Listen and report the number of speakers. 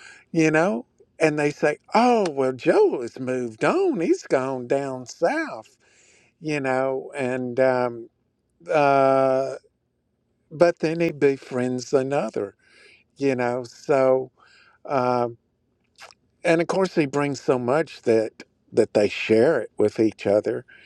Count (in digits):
1